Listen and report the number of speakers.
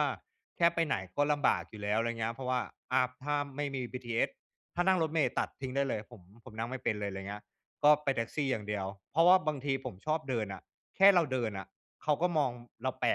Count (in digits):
1